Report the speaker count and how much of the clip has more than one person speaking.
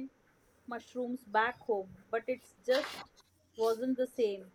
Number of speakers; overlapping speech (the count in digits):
1, no overlap